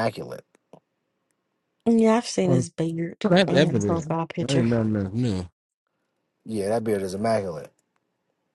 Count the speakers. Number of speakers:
three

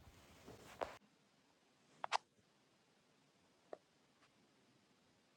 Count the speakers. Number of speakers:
zero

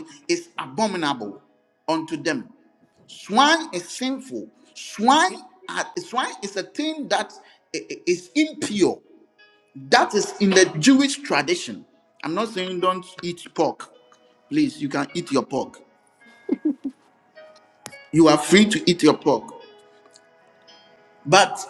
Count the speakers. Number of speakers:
one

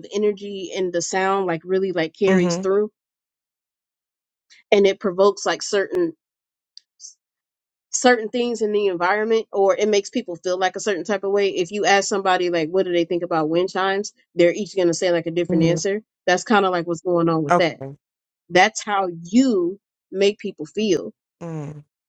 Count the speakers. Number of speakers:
two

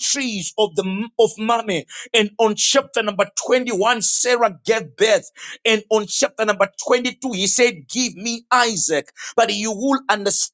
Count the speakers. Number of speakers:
one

